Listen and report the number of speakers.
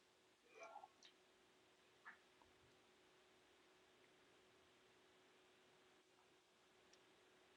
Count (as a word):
zero